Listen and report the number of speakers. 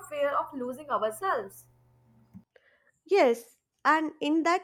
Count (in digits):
2